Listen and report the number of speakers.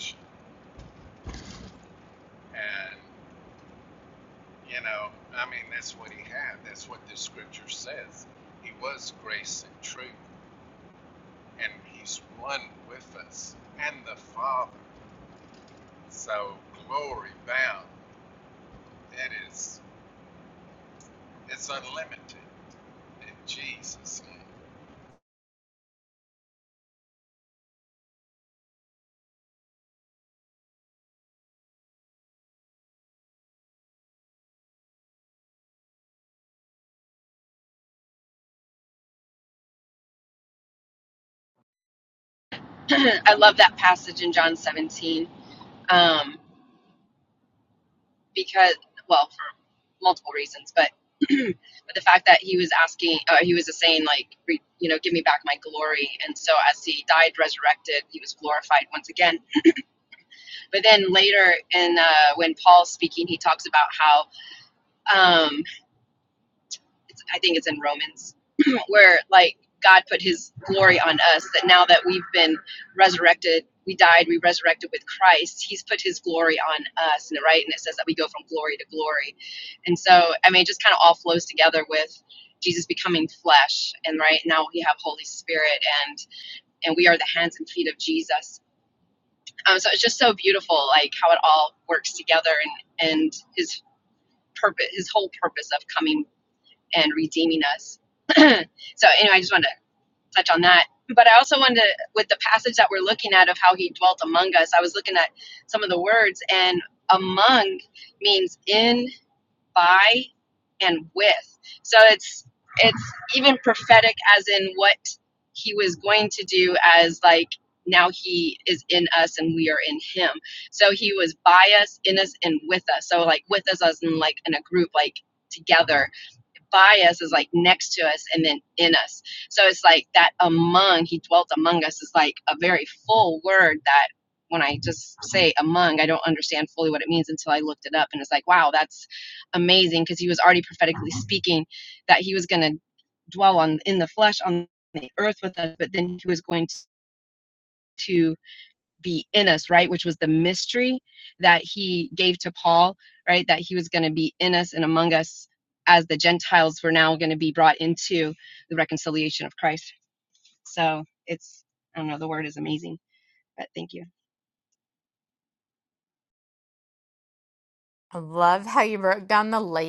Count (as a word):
three